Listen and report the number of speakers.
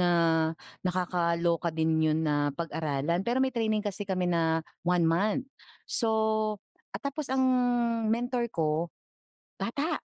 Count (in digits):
1